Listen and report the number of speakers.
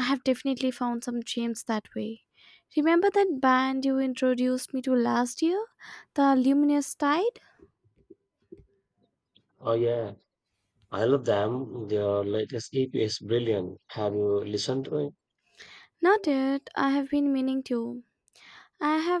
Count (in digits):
2